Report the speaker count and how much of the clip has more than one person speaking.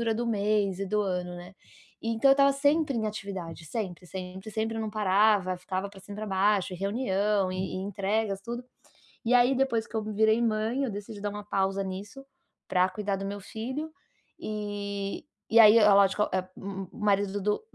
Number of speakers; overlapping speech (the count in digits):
1, no overlap